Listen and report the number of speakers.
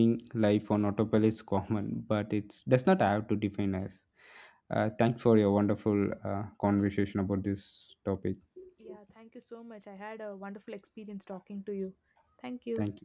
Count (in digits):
2